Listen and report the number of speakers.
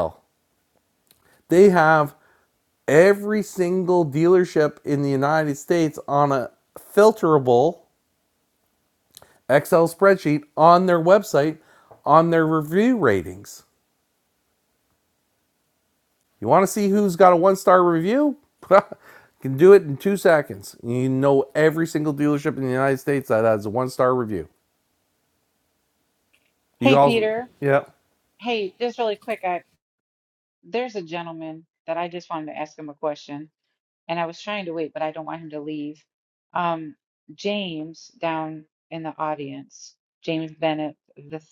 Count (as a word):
two